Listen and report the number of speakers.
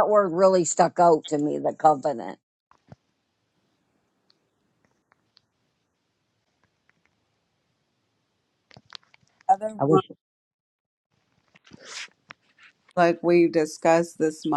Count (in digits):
2